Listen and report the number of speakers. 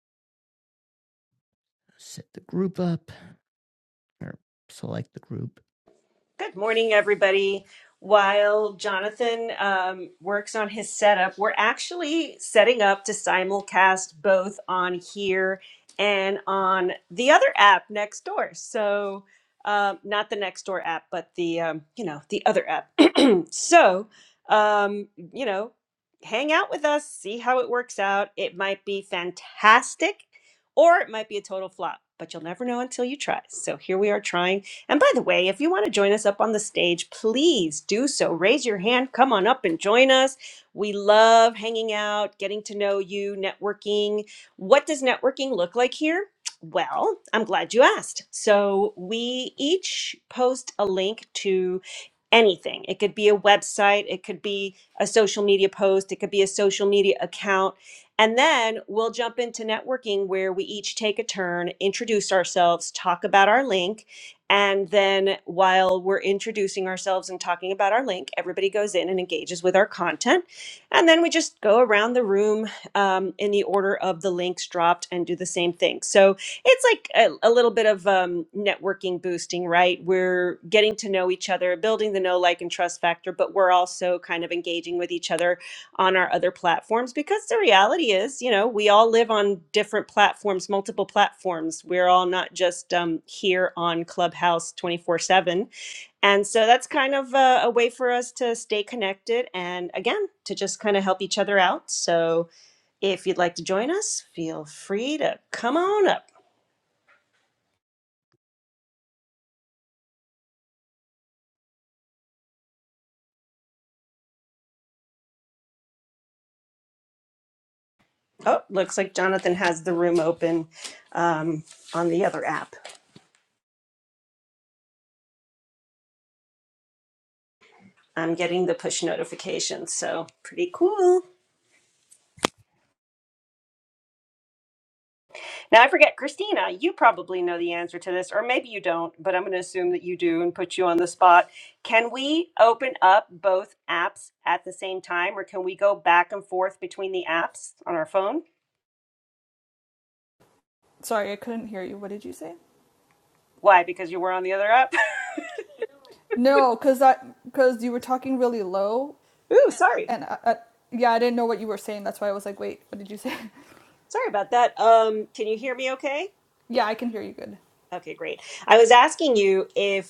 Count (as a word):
three